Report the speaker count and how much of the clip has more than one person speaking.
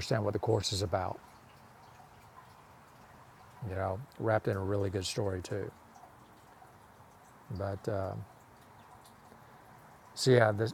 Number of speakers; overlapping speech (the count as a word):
one, no overlap